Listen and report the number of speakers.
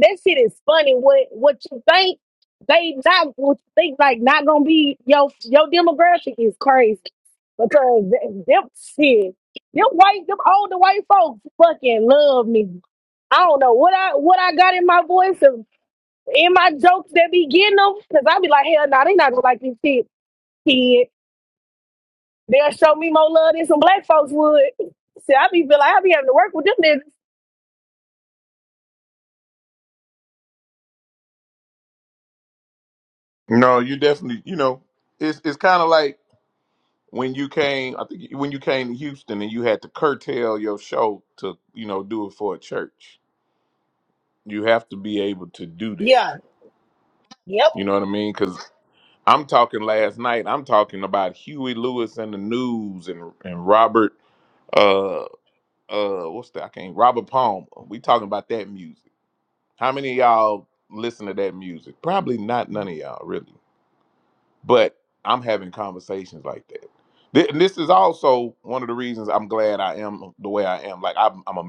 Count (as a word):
two